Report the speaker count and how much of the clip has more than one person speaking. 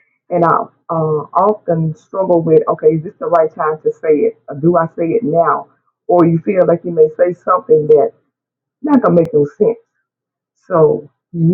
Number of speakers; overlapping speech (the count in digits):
1, no overlap